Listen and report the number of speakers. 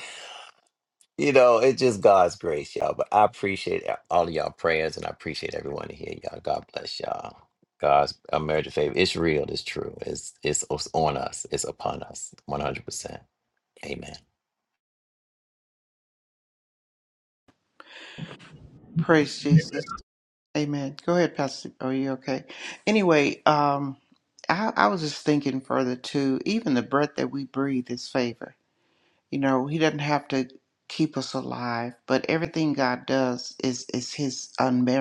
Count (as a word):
two